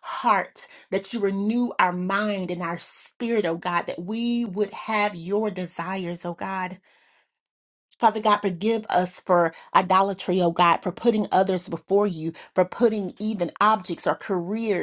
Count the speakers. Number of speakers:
1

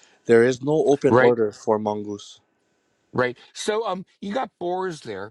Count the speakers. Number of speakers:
2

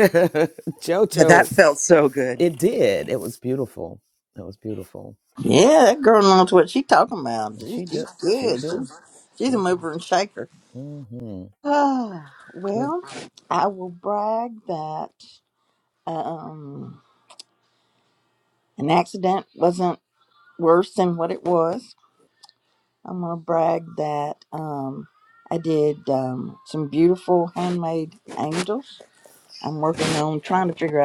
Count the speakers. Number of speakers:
3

